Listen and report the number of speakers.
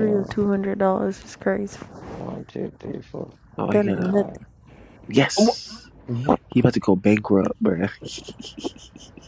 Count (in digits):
3